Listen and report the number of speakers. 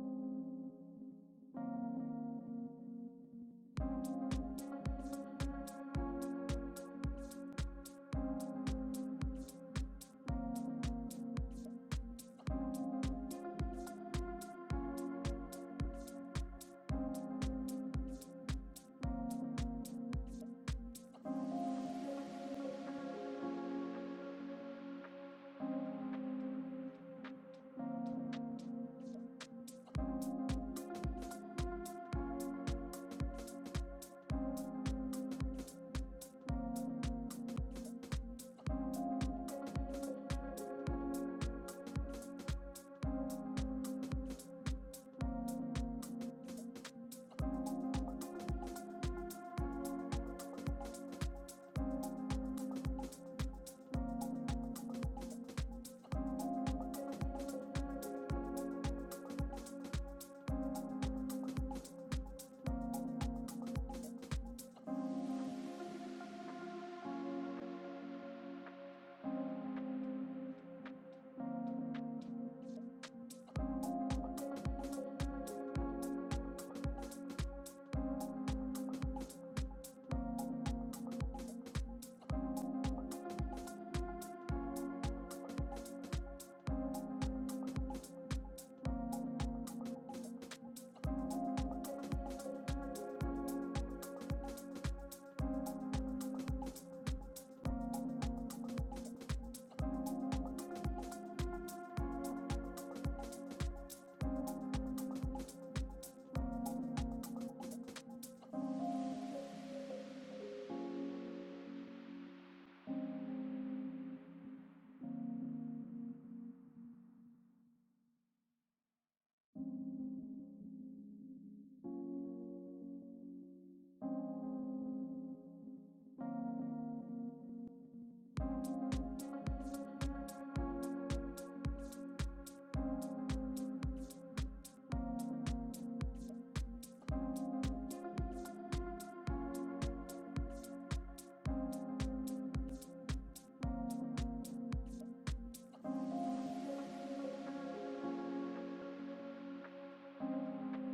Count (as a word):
zero